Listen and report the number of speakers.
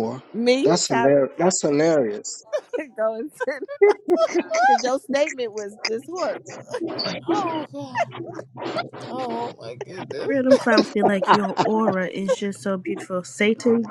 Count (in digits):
4